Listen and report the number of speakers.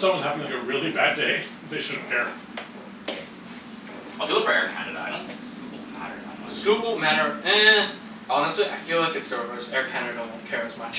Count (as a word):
three